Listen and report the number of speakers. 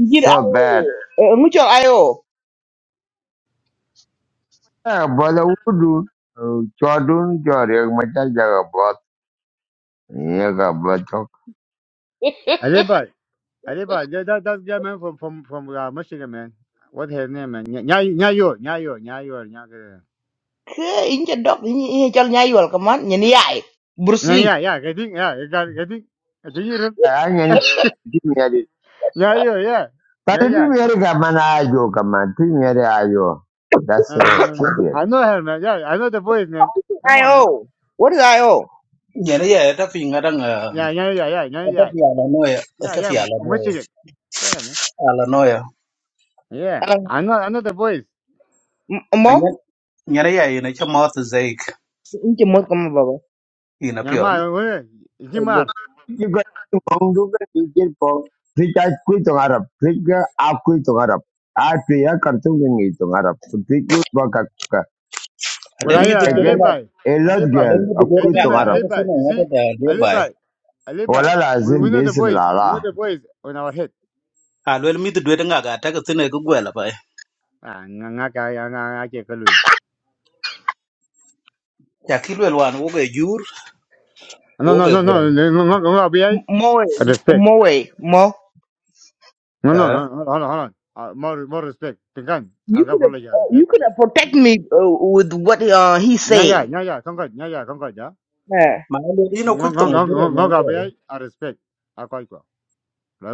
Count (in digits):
4